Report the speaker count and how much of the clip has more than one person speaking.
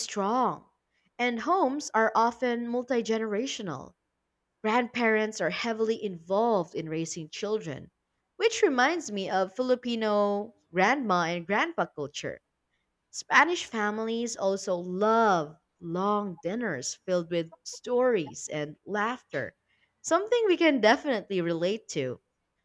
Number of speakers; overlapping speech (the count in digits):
1, no overlap